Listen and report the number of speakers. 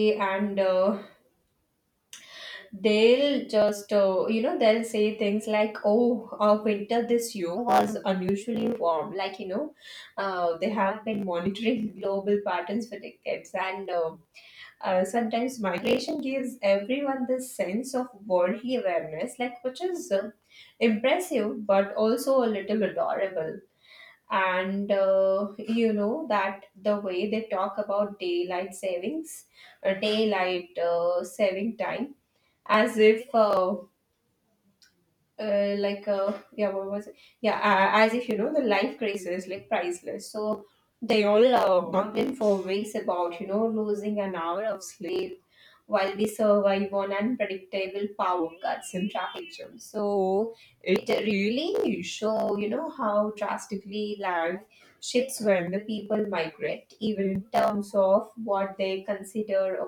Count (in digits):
1